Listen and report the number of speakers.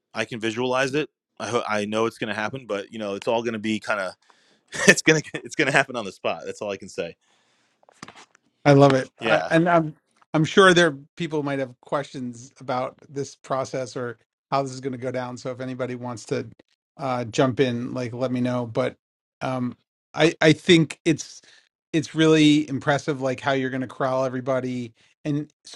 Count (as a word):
two